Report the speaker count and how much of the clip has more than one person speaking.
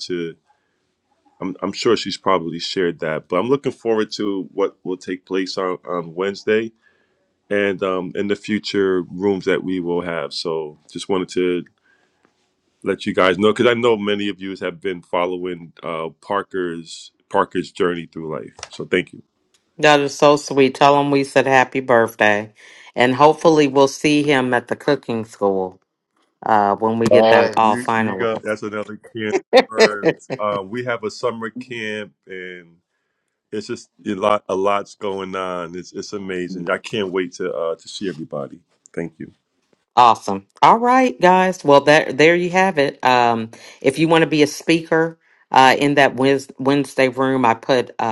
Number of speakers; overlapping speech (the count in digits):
2, about 3%